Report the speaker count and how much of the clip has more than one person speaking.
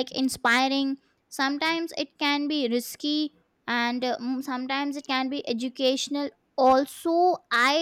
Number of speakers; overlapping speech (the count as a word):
one, no overlap